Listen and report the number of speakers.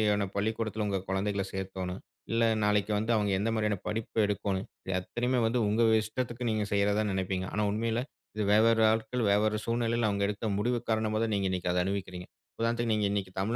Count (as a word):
one